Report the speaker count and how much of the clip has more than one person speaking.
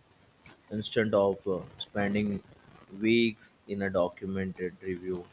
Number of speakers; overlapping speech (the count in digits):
1, no overlap